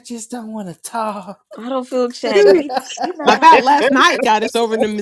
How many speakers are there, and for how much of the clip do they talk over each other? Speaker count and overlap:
3, about 10%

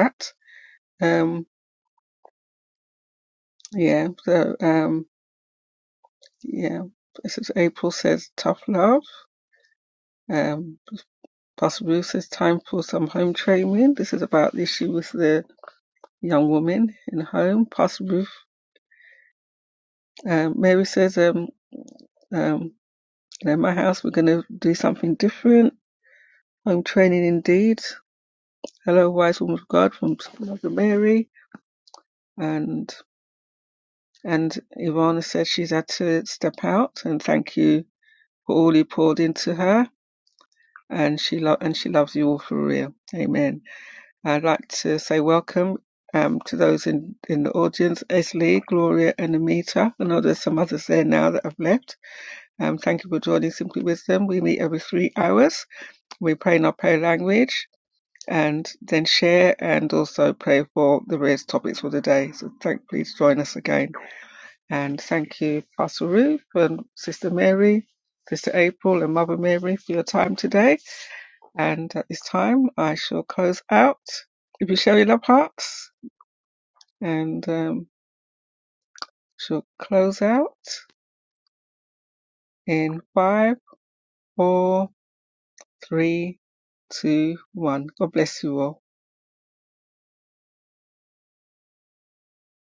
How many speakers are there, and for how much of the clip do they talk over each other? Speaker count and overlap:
1, no overlap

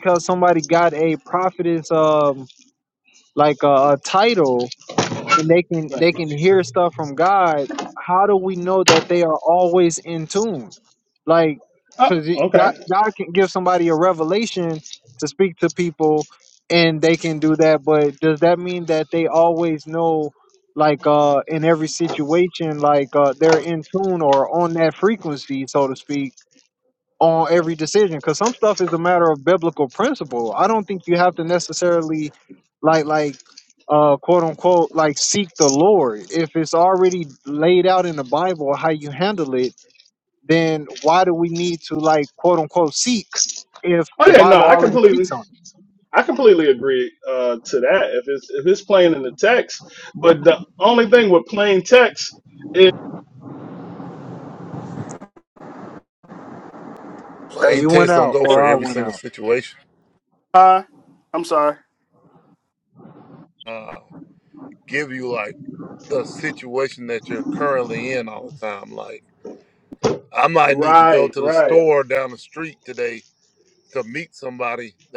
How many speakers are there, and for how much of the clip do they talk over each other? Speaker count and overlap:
3, about 6%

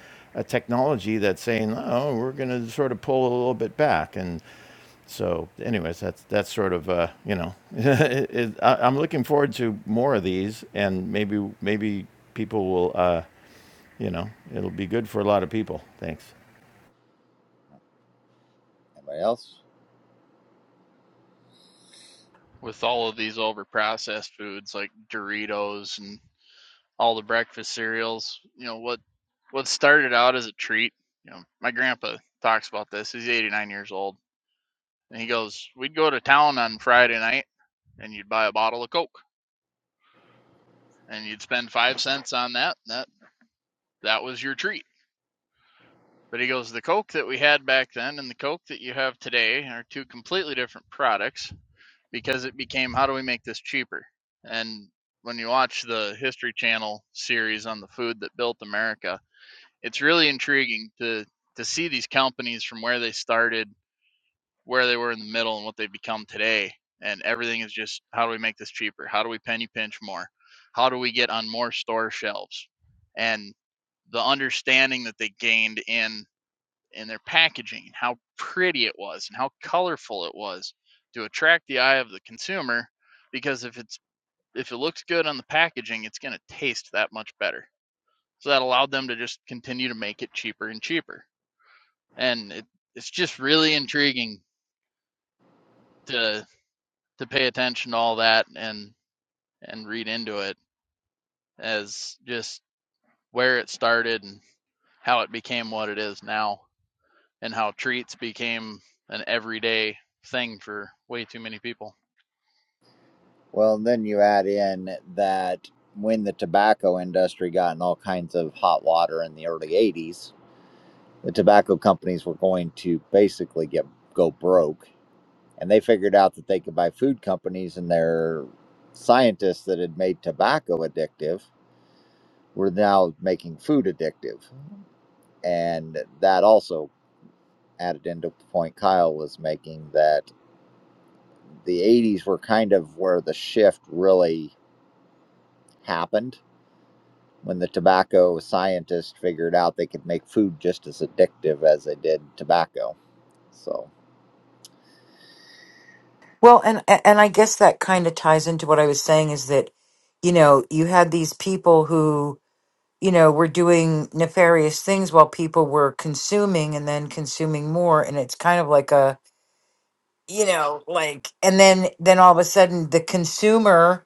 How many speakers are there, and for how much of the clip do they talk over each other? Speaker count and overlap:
4, no overlap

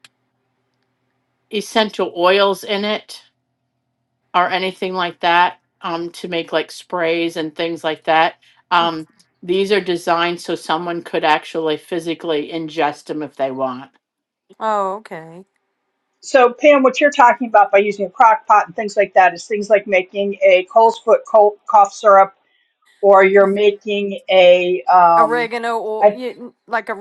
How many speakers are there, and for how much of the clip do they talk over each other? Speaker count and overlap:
3, about 2%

